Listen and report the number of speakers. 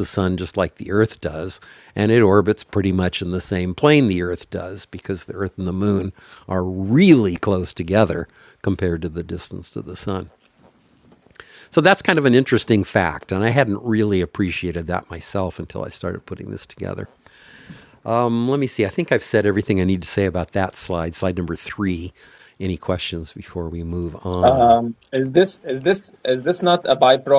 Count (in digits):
2